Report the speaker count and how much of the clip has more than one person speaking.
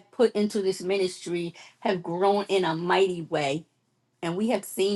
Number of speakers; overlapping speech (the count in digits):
1, no overlap